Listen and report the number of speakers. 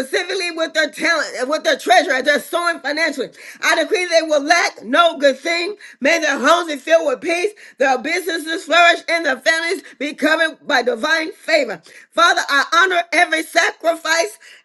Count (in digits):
1